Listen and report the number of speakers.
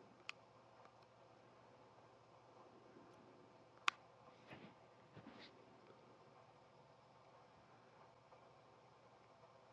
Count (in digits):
0